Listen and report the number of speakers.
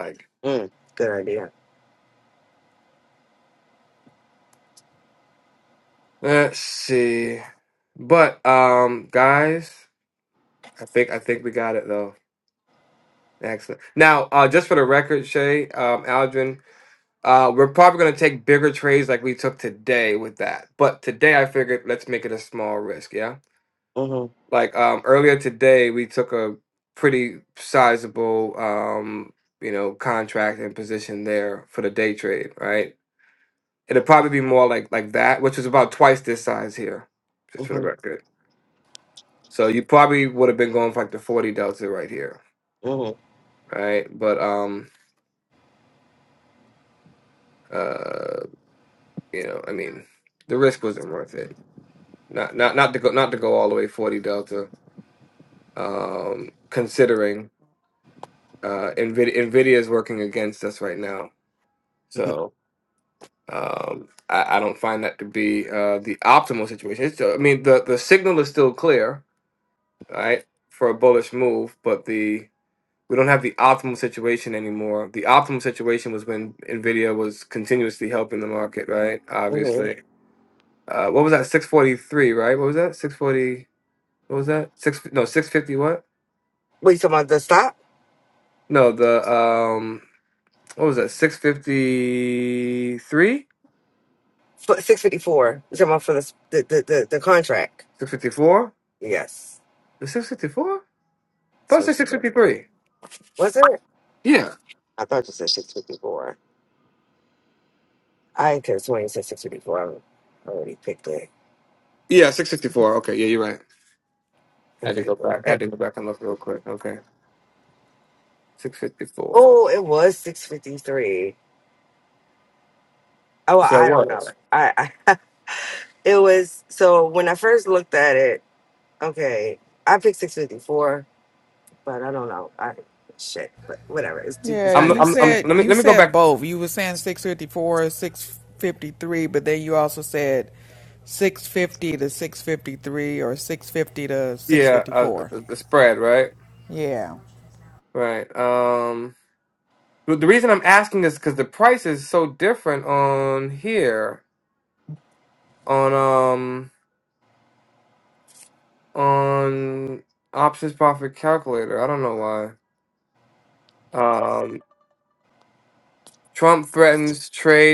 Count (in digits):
3